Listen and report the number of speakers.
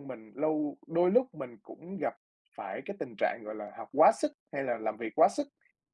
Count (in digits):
1